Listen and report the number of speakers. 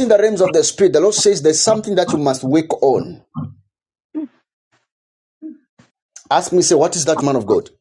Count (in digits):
1